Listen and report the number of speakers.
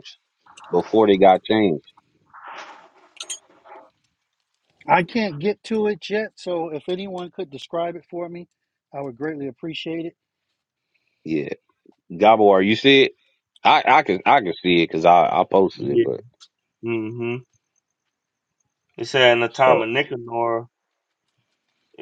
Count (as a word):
three